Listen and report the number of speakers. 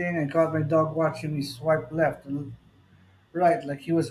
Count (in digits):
1